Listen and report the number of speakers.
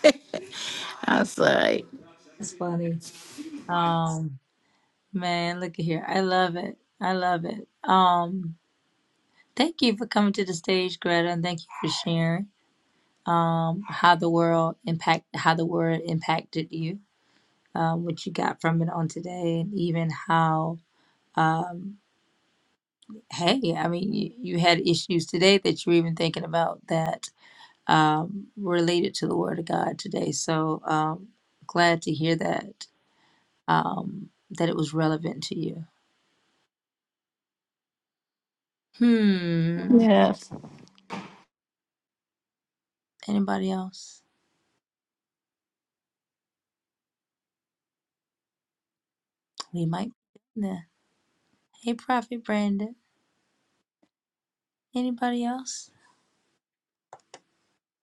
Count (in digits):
2